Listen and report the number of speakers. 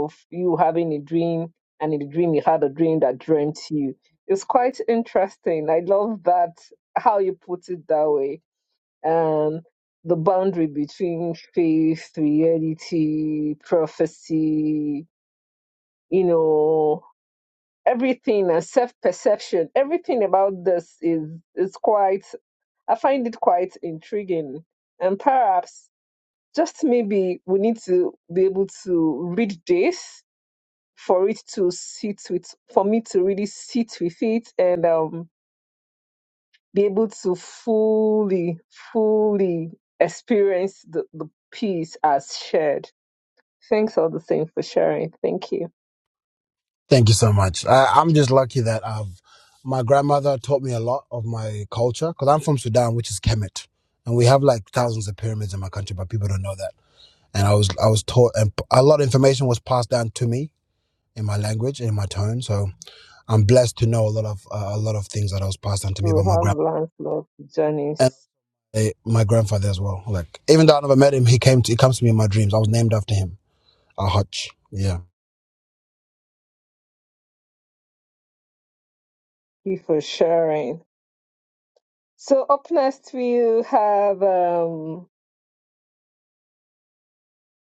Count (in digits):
2